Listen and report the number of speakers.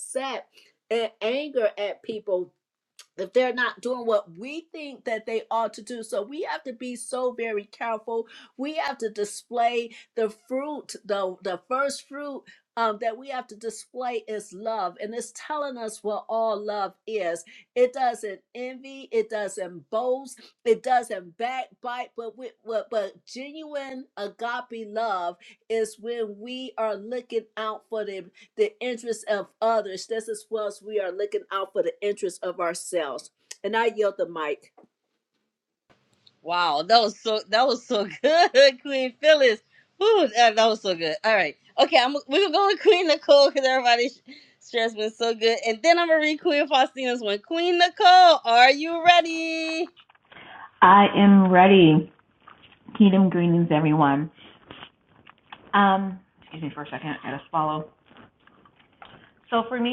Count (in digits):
3